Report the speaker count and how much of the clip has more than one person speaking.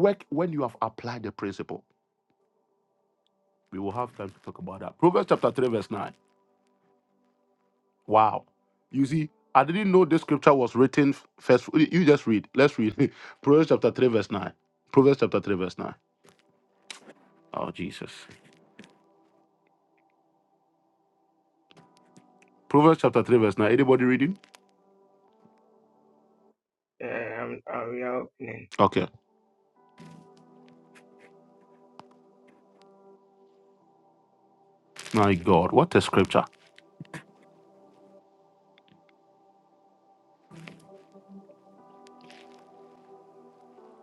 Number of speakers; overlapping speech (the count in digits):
2, no overlap